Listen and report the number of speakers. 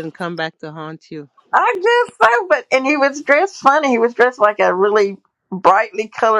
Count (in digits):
2